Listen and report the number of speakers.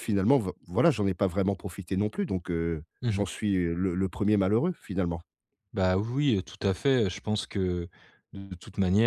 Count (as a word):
two